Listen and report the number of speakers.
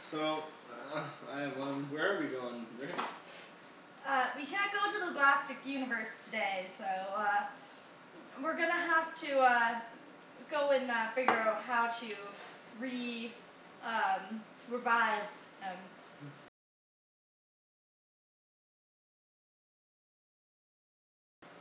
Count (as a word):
two